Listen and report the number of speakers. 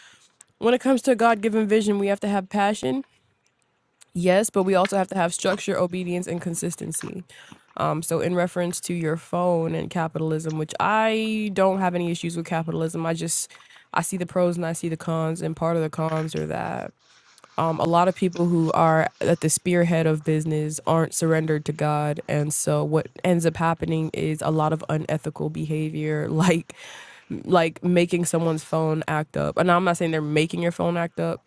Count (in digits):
1